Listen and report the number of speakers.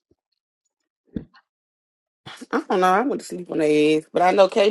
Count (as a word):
one